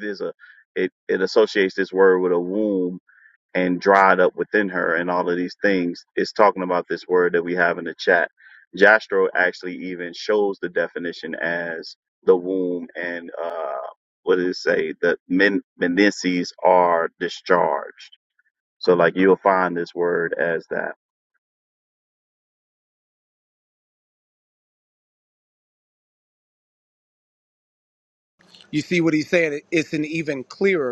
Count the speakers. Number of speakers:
2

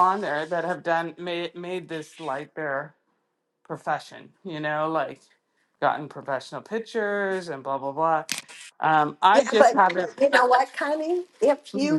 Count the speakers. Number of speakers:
2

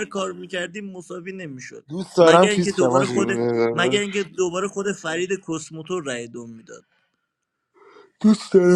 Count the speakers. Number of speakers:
3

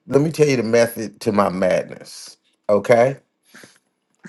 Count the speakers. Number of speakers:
1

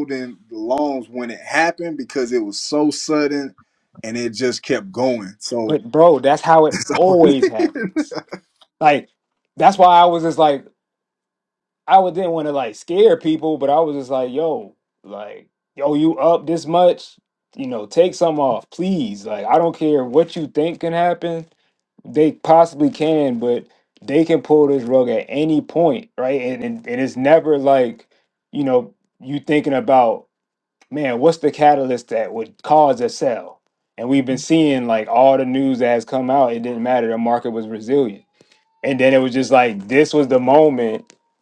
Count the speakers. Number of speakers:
2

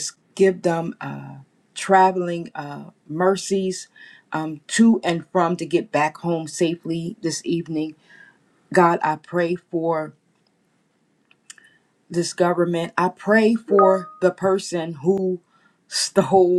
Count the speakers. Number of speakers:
1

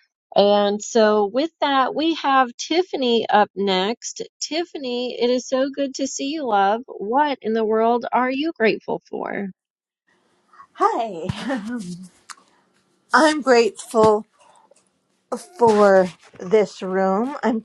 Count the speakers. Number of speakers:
2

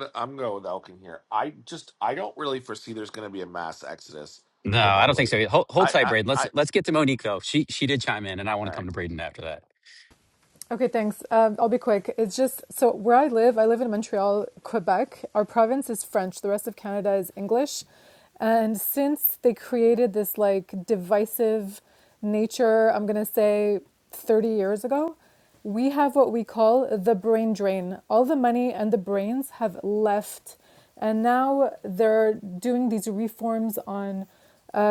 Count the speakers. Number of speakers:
3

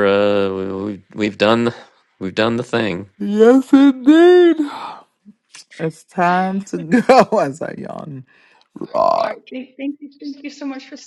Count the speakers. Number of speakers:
3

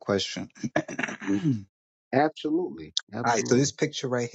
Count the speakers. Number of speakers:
2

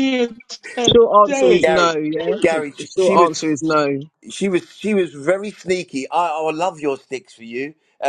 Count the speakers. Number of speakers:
3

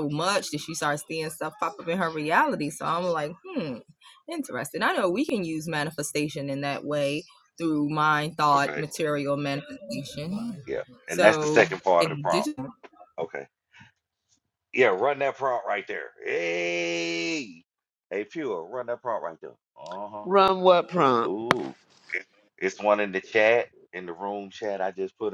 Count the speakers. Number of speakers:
3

